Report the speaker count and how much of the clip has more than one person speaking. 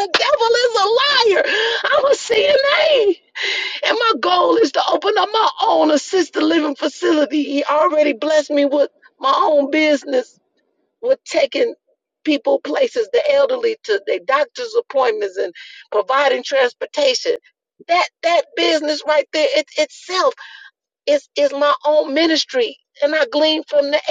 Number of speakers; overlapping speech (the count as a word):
one, no overlap